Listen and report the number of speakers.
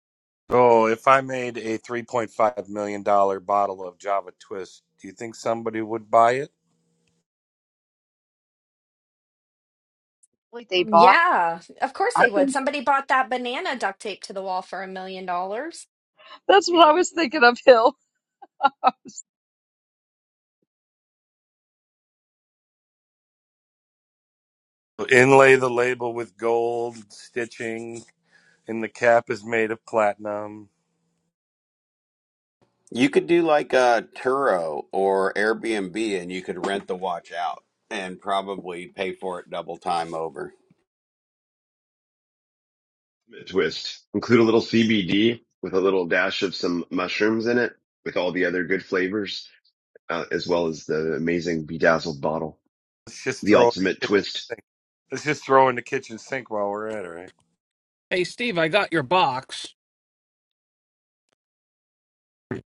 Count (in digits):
6